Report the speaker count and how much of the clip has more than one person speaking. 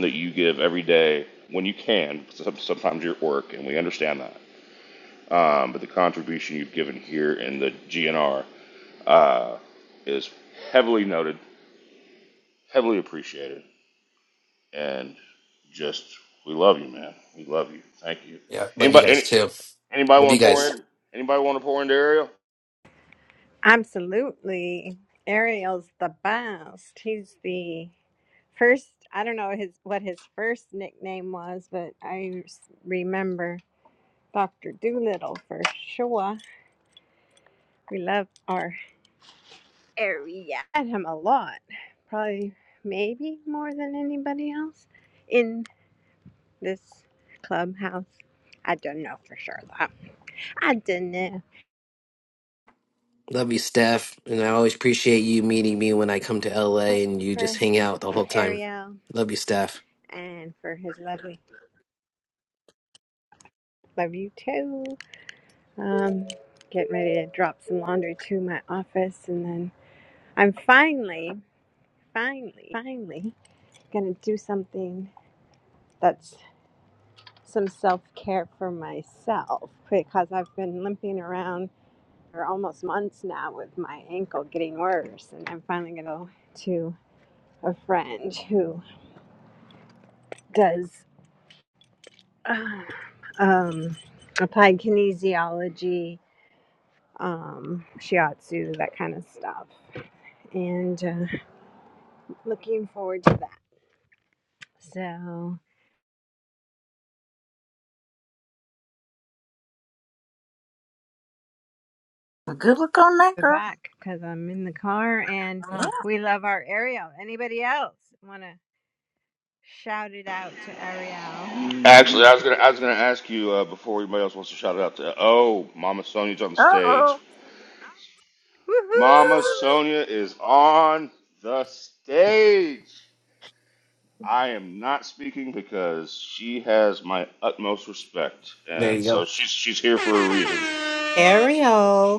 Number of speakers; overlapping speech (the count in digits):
5, about 2%